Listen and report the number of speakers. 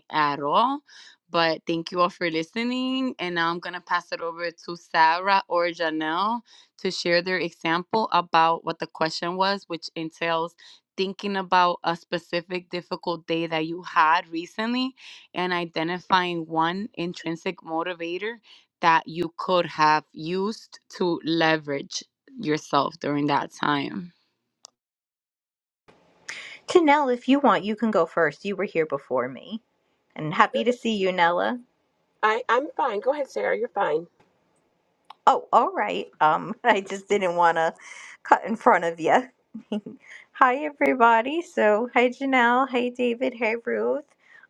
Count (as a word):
three